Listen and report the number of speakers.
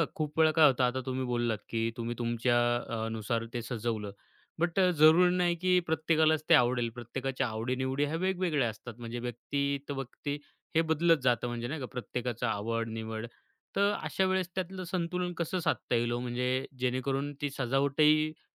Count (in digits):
1